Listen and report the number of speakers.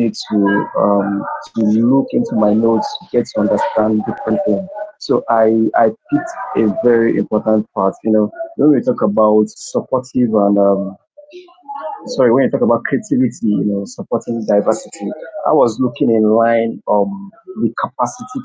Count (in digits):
1